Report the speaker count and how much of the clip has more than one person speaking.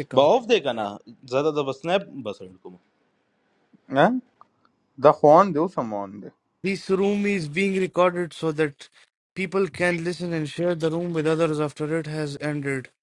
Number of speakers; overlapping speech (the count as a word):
three, about 1%